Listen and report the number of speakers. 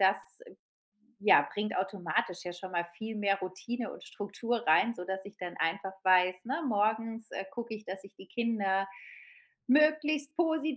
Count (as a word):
one